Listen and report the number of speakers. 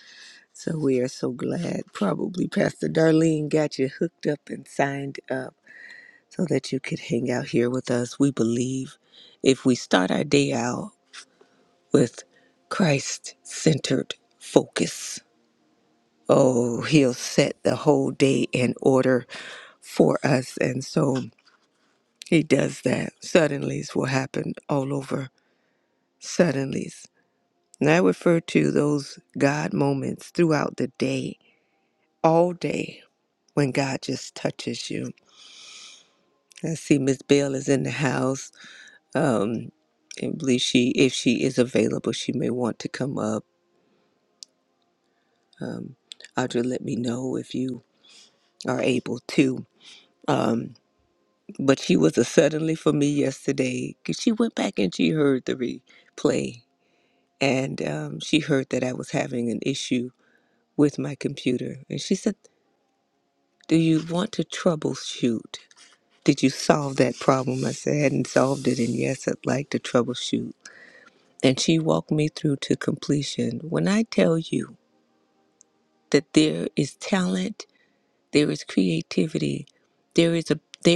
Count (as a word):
one